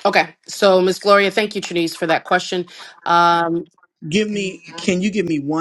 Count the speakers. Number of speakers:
two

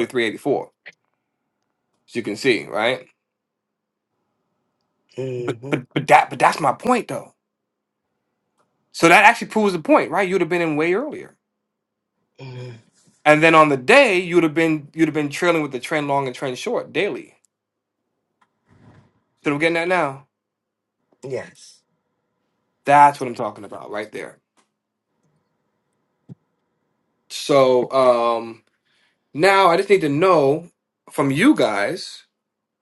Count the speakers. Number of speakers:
two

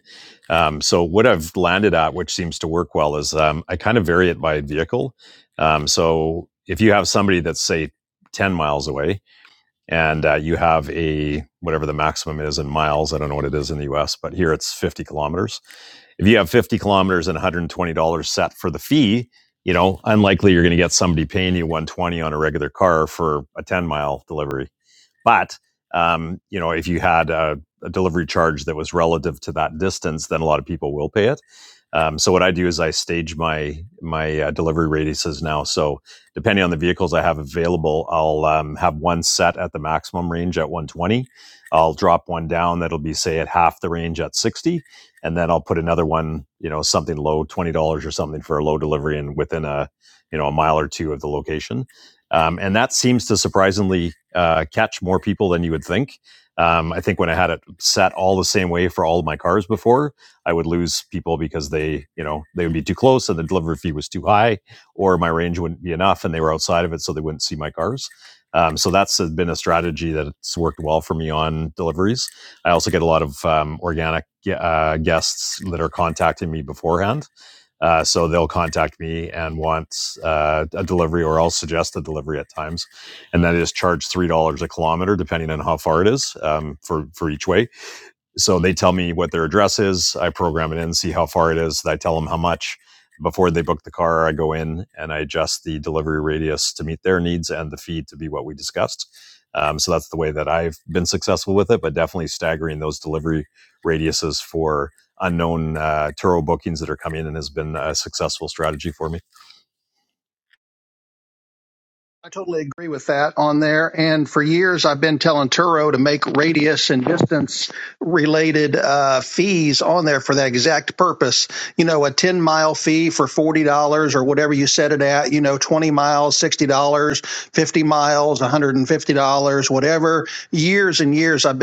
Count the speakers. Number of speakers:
two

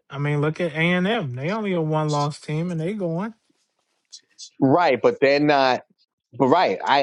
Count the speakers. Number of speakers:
two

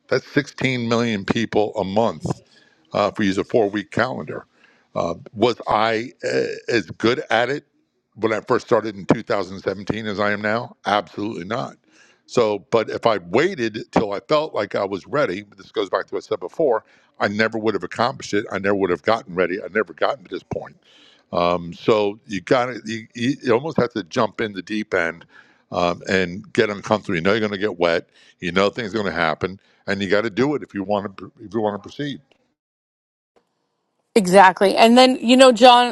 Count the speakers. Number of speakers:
two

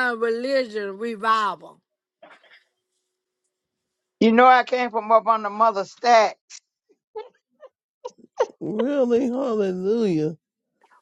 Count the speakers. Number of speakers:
three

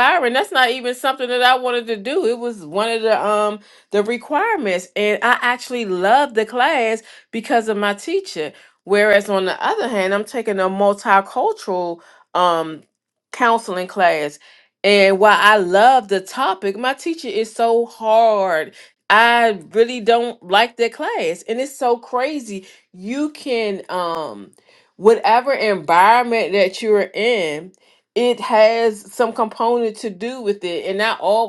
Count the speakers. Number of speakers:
one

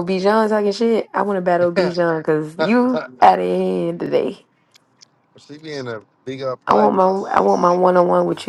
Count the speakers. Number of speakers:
two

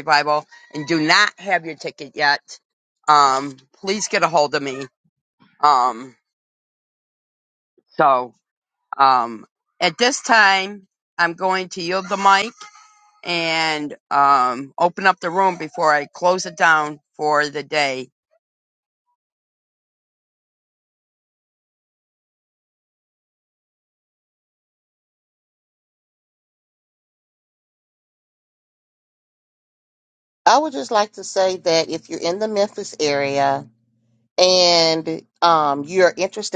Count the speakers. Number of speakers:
two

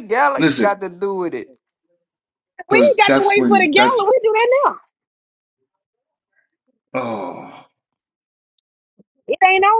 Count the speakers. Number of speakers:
three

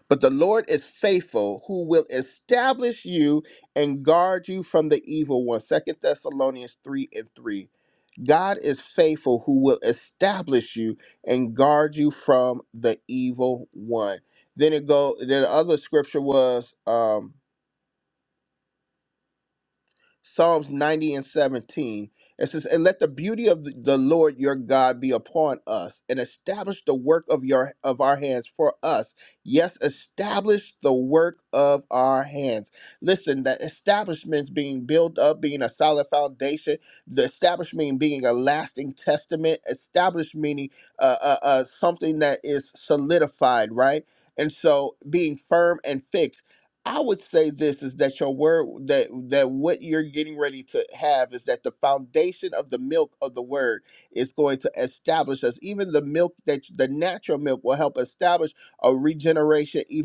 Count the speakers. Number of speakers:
one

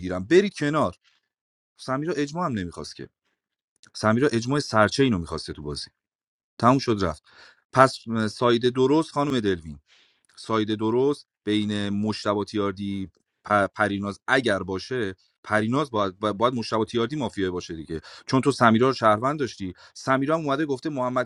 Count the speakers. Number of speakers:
one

